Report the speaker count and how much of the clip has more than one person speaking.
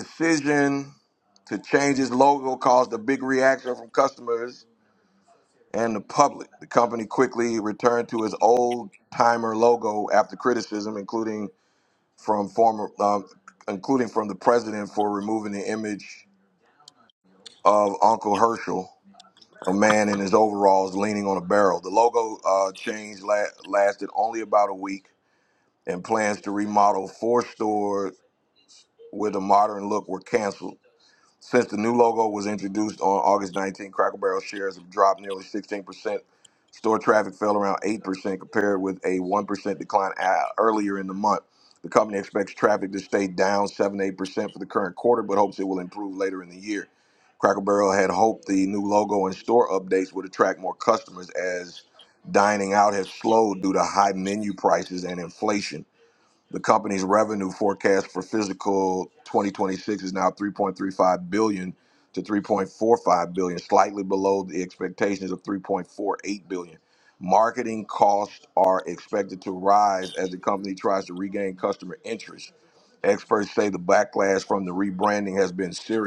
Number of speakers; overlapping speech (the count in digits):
1, no overlap